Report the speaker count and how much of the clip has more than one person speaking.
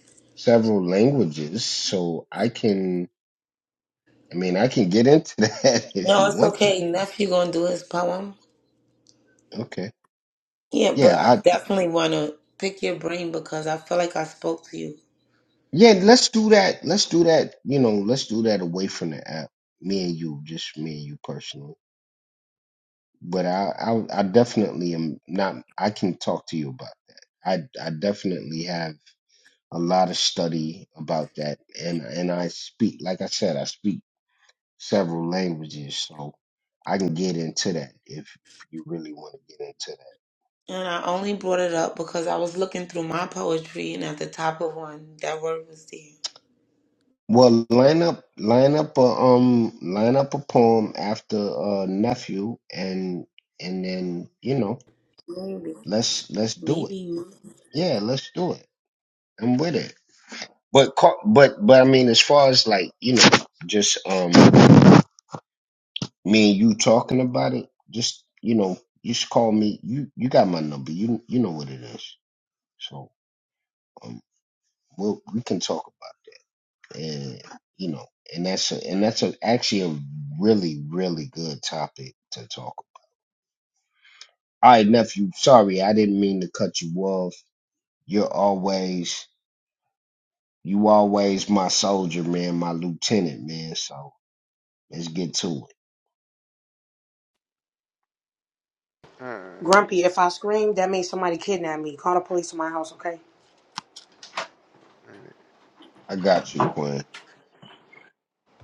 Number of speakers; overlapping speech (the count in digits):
4, about 2%